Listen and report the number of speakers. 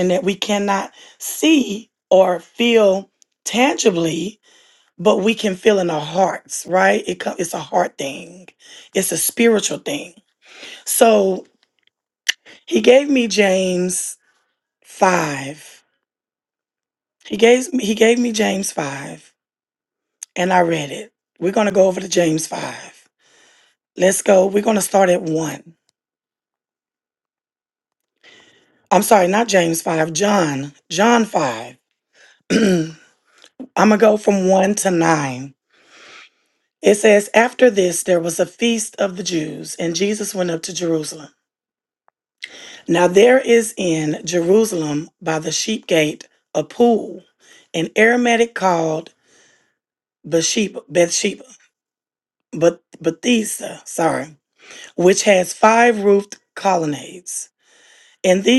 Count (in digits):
1